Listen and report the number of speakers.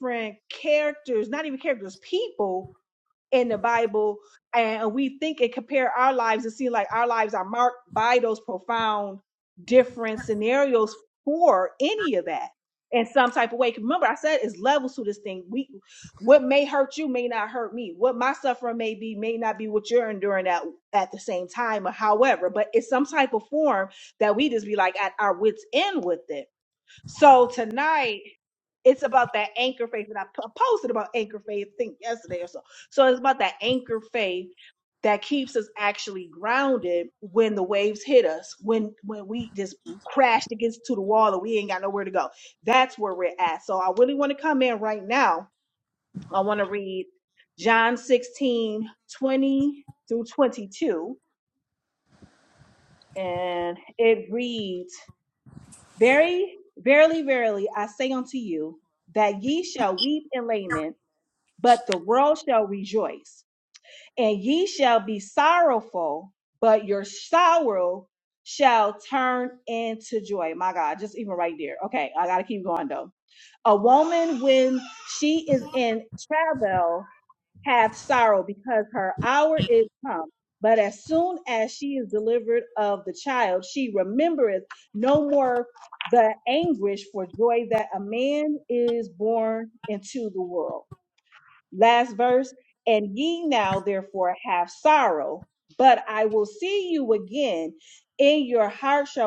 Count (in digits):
1